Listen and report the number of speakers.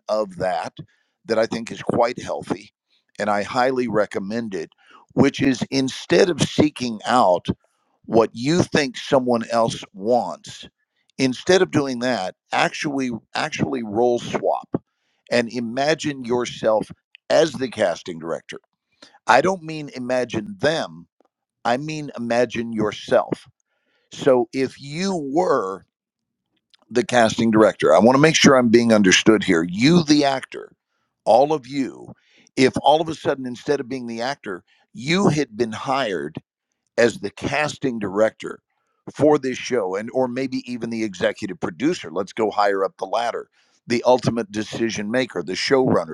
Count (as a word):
one